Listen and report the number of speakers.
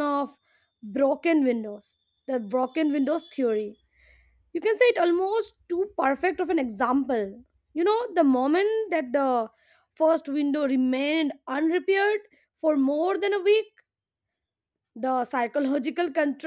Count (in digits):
1